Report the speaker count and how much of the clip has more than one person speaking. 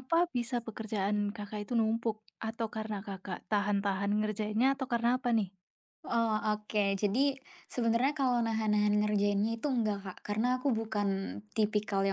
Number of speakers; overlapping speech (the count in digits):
2, no overlap